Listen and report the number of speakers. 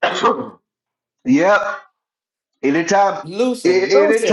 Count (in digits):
2